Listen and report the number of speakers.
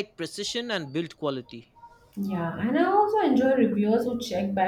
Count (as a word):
two